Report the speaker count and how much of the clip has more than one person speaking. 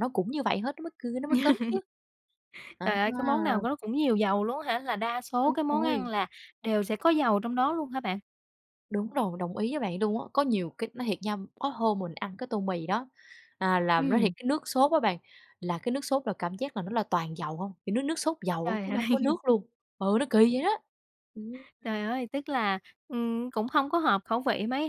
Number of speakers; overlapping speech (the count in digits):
2, about 8%